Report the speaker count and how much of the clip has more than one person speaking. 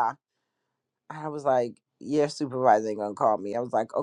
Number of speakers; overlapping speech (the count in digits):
1, no overlap